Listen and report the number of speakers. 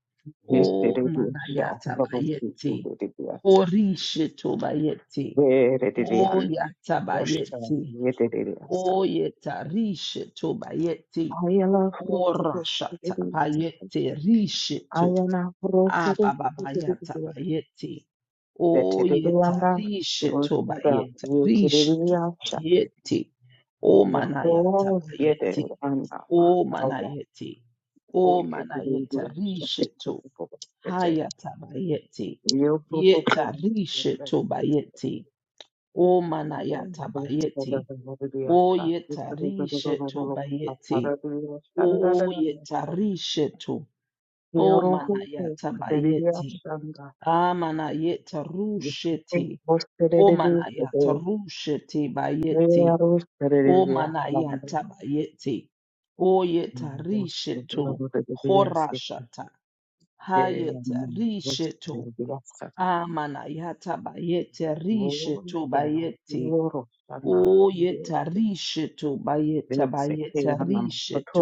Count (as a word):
two